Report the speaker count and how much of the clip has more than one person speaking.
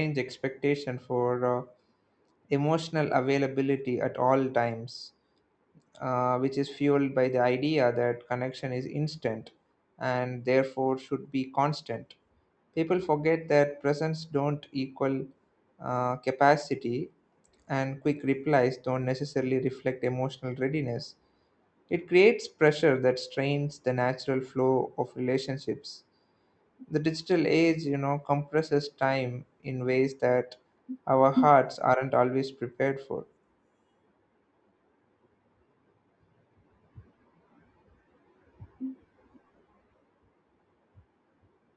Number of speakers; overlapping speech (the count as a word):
one, no overlap